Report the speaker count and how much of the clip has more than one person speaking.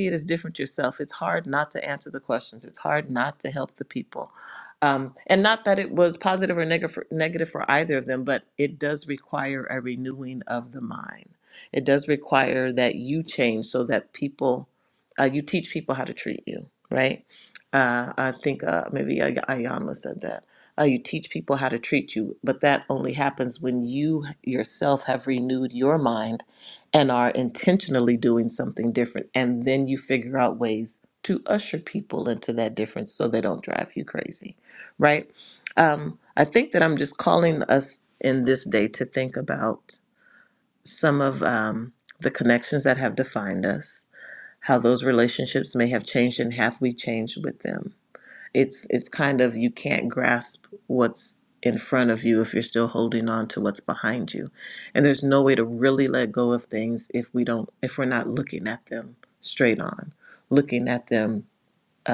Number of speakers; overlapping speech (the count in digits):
1, no overlap